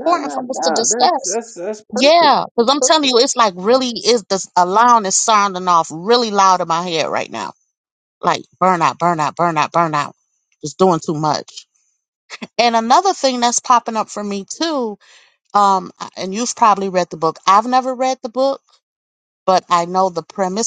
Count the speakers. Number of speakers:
two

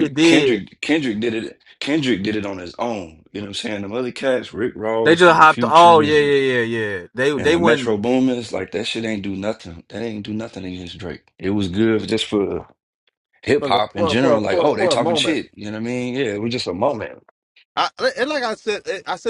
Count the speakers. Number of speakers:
three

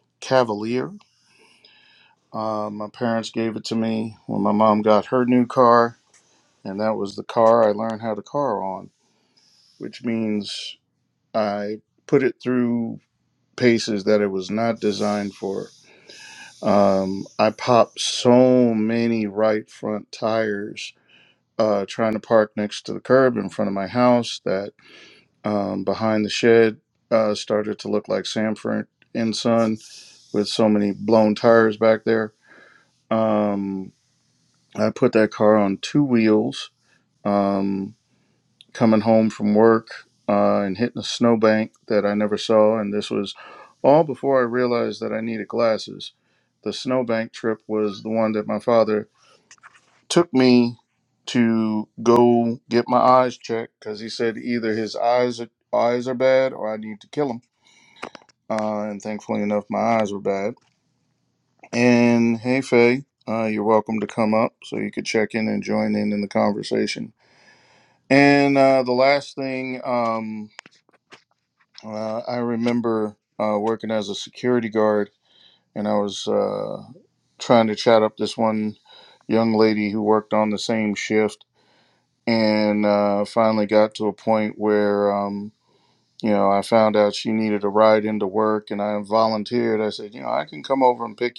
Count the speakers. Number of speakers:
one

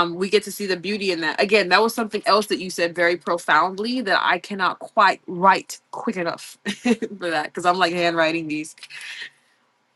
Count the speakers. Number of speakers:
one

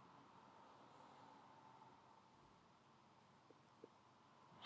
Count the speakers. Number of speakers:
zero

